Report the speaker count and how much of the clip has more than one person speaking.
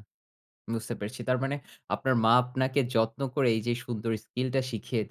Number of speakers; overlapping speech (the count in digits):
1, no overlap